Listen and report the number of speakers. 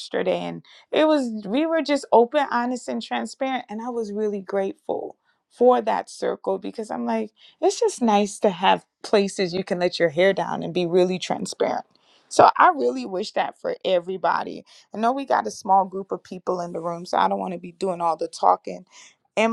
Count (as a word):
one